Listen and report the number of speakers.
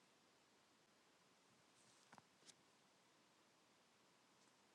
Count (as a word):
zero